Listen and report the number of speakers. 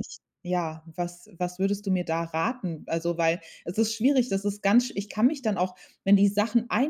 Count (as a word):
one